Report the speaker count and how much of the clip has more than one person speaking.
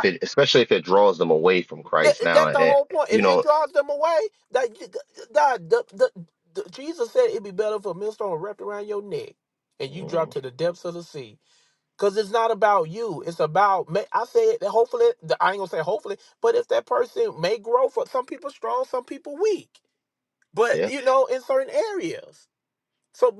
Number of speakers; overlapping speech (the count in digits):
2, about 7%